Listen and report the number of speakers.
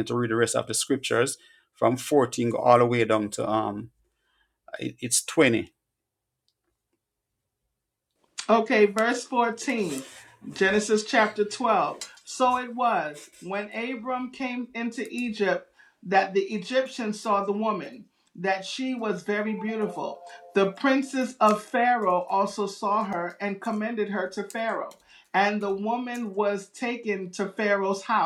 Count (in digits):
2